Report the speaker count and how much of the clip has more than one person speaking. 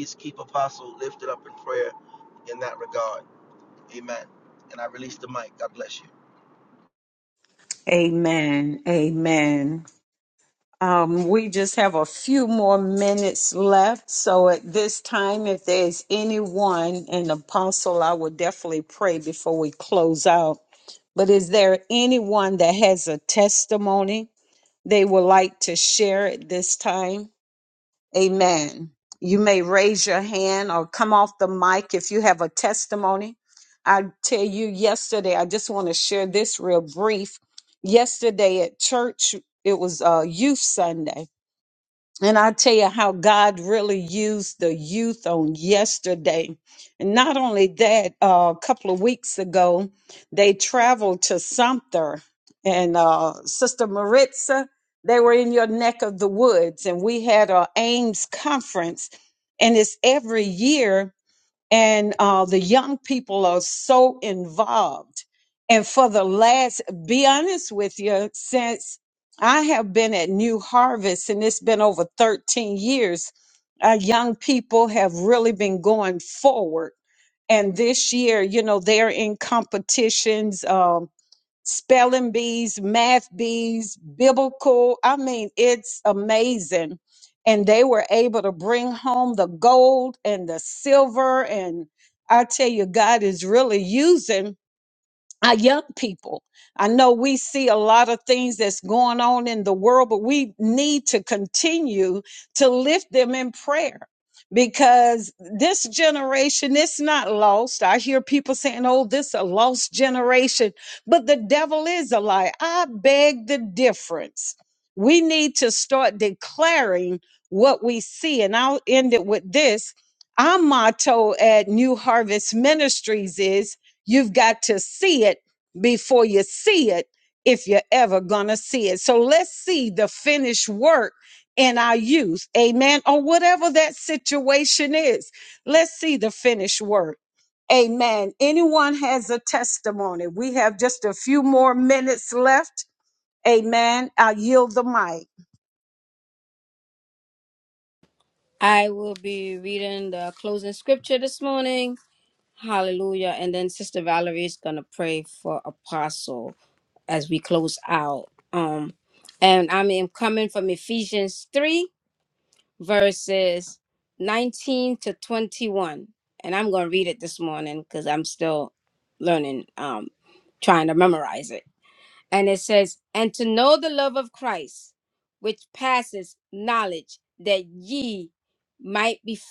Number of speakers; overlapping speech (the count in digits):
3, no overlap